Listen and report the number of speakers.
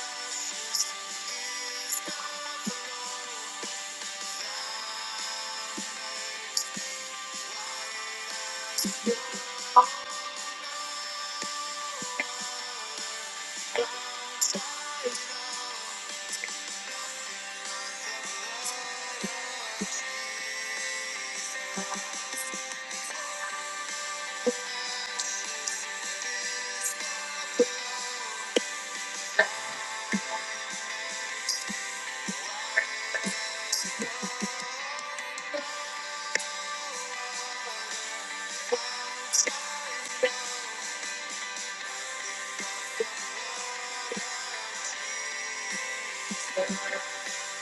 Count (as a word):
zero